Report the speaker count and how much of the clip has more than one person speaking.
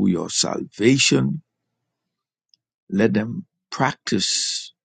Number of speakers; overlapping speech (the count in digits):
1, no overlap